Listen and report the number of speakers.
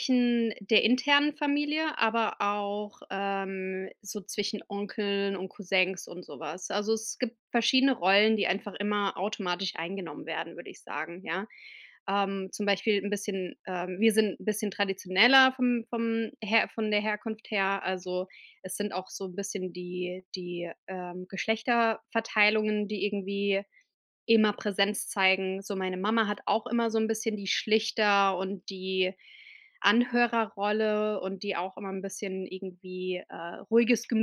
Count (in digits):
1